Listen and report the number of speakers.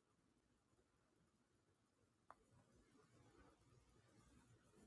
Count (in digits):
0